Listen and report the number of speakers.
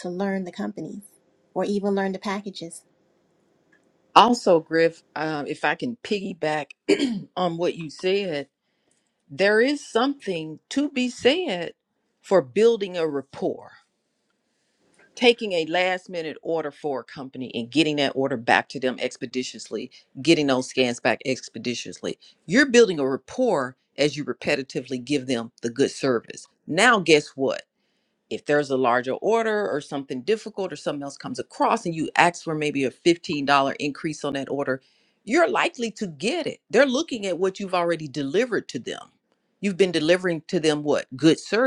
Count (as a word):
two